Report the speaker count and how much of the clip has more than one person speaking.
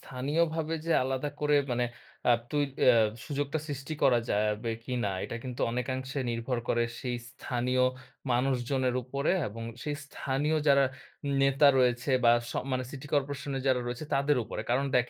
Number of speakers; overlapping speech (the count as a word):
one, no overlap